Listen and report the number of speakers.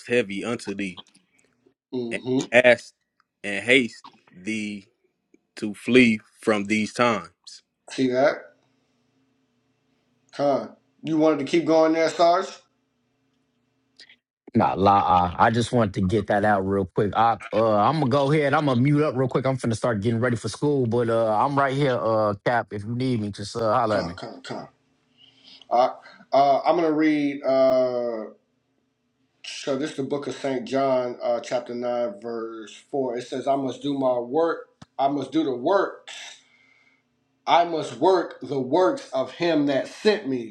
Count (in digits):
3